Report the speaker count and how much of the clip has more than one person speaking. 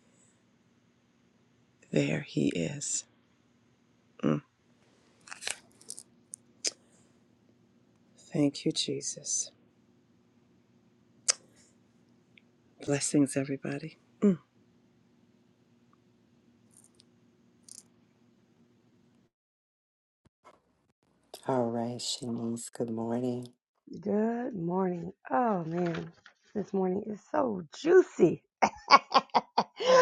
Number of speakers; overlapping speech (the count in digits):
3, no overlap